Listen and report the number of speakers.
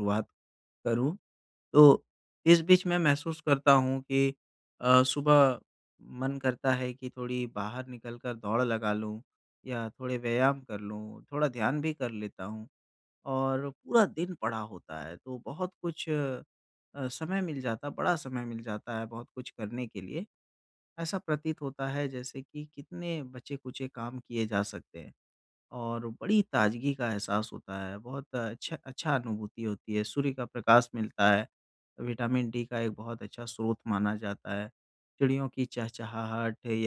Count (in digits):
1